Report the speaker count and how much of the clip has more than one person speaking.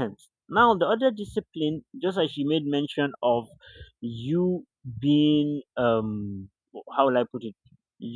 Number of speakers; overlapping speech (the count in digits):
1, no overlap